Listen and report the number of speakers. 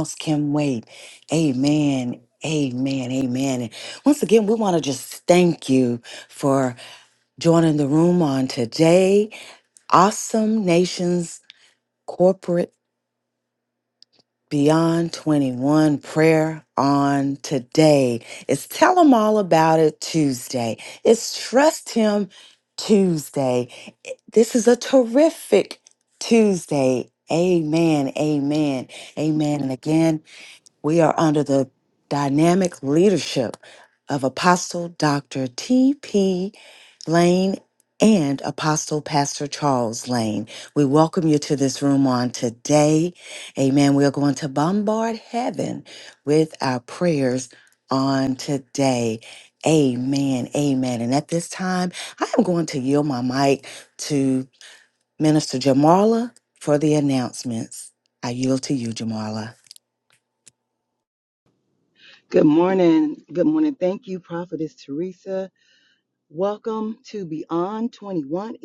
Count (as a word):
two